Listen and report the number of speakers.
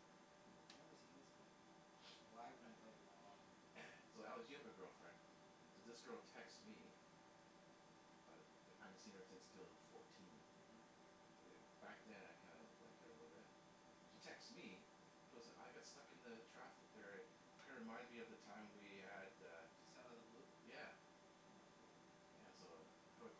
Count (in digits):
2